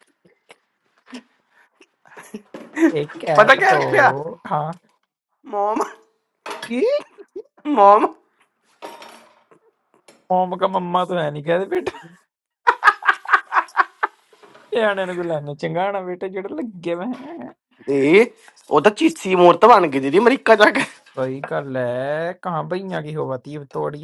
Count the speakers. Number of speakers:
two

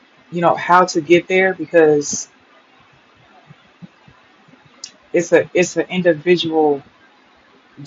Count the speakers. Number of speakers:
one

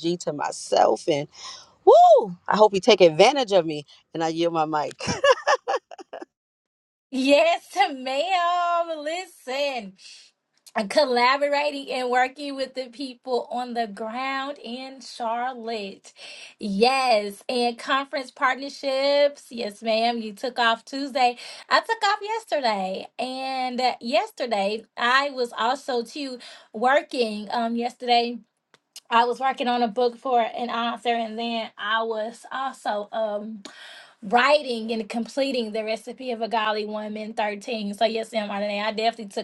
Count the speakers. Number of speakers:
two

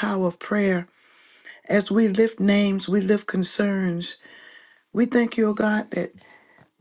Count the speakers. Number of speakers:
one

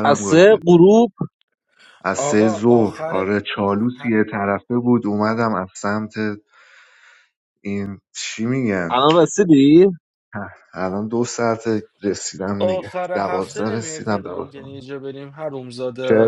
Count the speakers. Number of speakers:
three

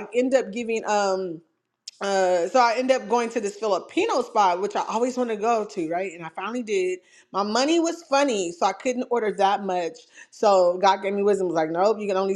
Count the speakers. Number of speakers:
one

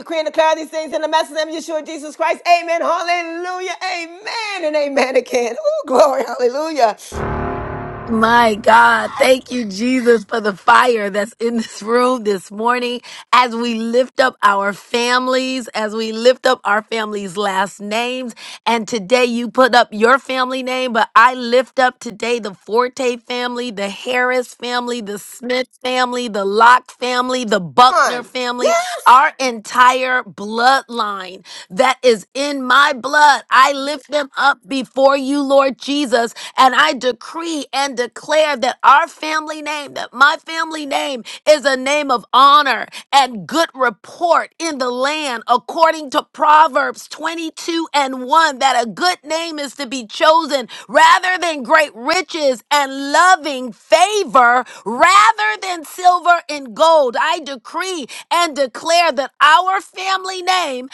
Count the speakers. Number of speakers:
two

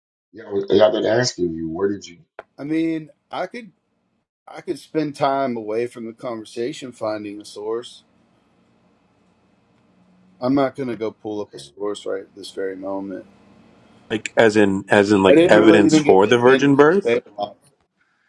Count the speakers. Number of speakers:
three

